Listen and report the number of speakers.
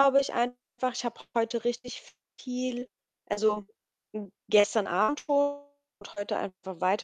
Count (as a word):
one